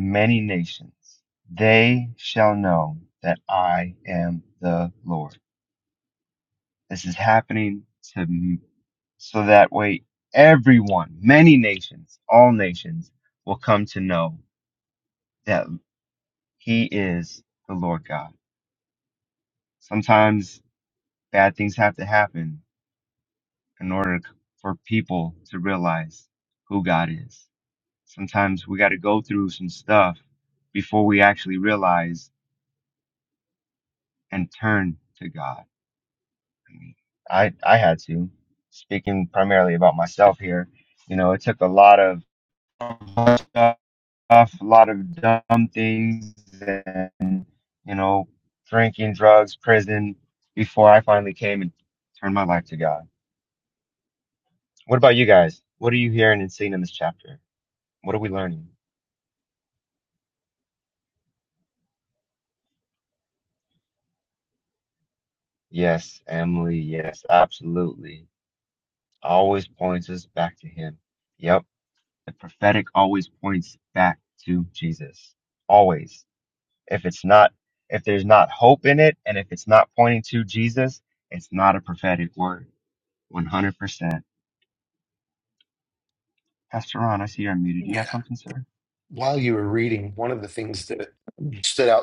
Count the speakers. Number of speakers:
2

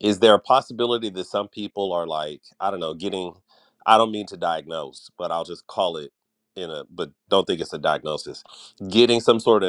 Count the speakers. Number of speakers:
1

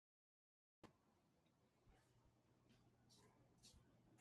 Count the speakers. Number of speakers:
0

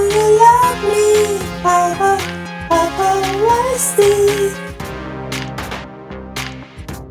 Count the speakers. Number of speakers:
1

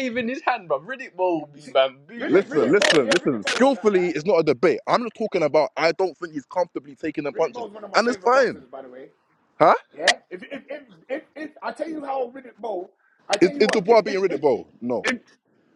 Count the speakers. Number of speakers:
3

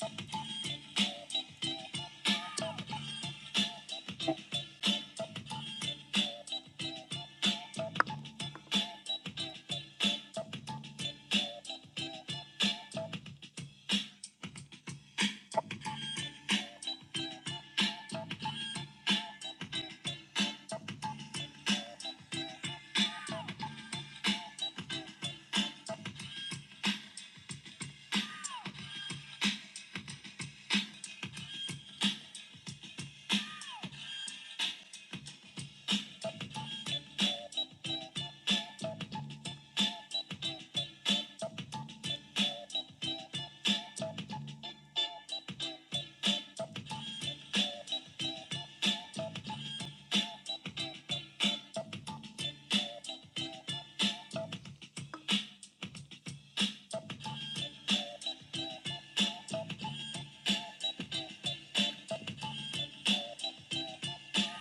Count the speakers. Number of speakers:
0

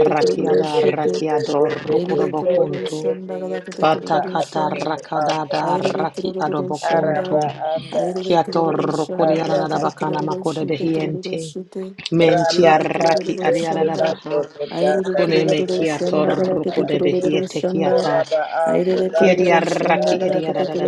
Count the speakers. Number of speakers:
3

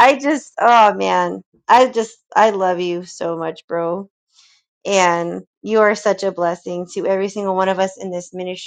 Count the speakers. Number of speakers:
1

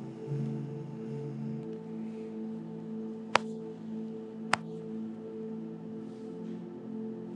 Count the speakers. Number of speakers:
0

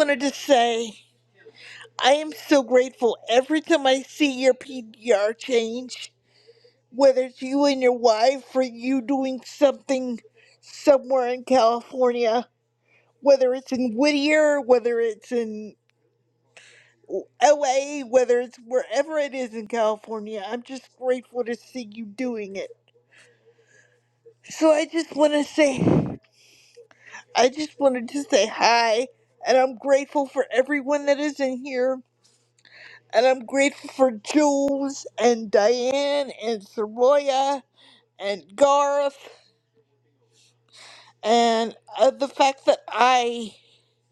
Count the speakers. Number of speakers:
1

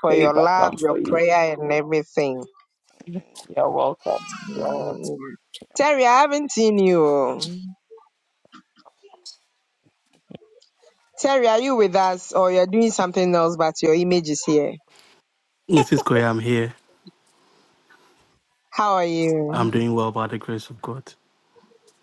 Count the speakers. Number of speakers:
3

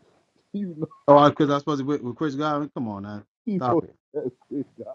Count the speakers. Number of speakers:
2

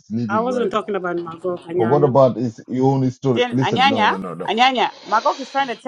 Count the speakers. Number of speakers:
3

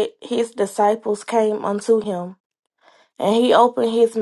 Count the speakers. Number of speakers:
1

